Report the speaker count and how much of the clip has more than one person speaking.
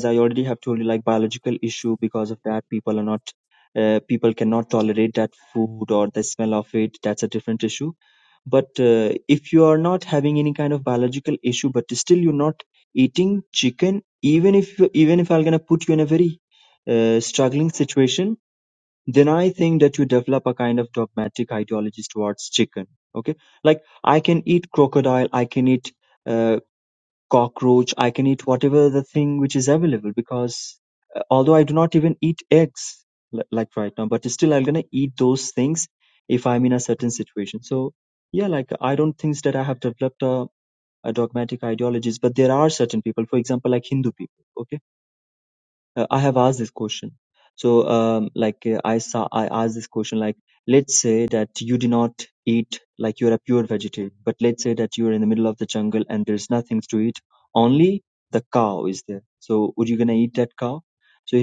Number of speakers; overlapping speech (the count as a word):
one, no overlap